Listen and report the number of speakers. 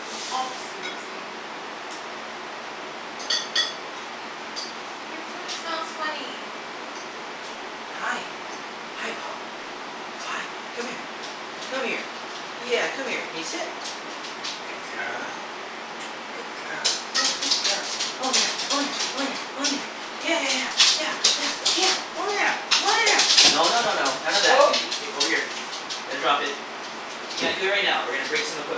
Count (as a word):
two